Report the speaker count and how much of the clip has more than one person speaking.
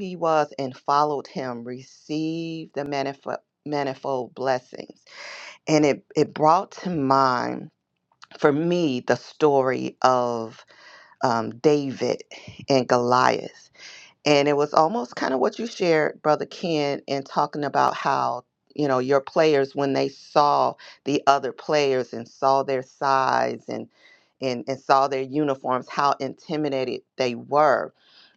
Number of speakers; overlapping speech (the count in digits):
1, no overlap